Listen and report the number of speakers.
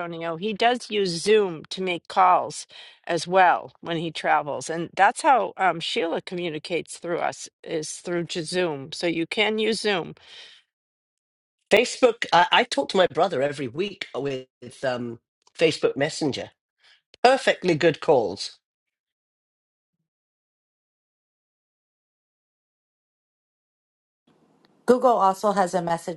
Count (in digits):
3